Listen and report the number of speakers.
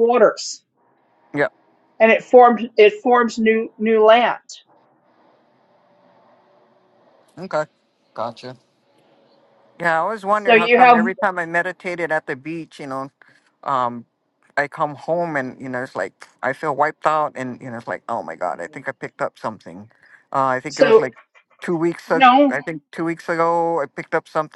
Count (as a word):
two